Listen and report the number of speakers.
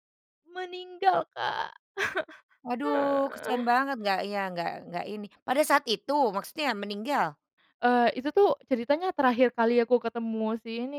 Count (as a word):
two